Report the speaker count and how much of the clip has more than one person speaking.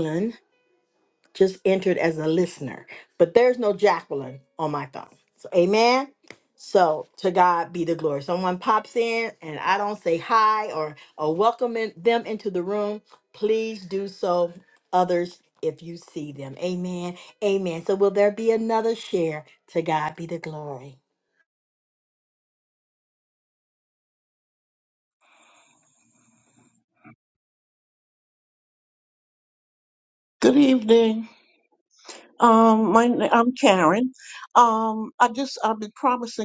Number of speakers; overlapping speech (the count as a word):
two, no overlap